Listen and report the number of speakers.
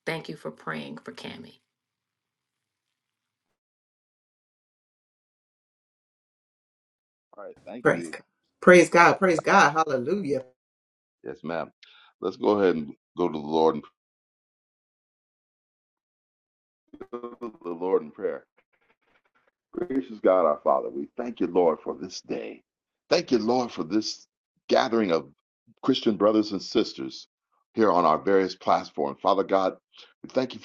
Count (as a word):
three